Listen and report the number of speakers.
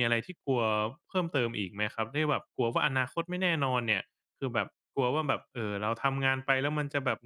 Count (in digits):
1